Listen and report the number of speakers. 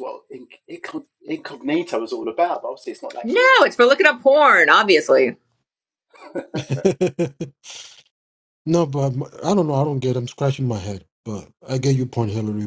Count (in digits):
3